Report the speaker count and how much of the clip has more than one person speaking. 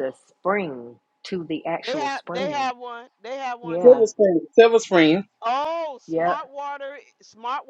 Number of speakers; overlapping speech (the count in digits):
3, about 21%